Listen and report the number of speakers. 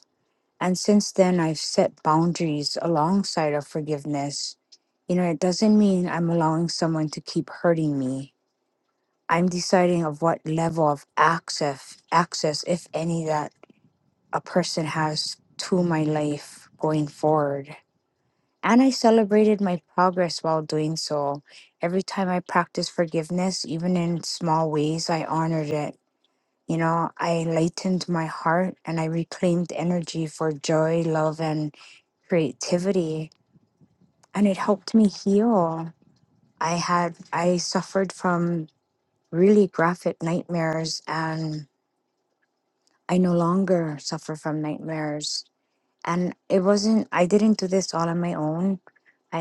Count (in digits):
1